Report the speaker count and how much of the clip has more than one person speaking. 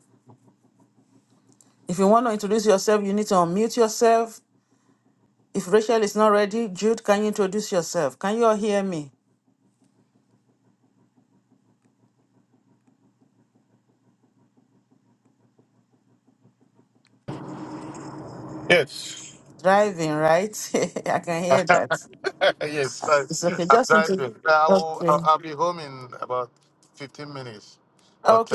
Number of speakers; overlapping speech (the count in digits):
2, about 5%